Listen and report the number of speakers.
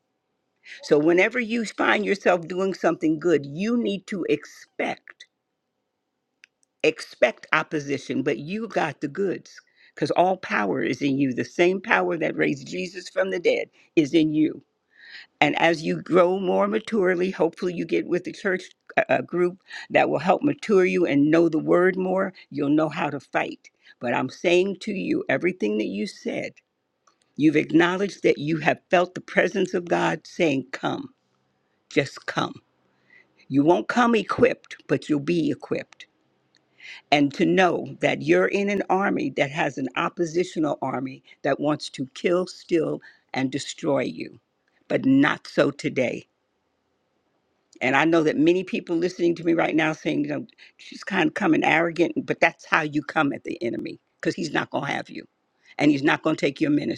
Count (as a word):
one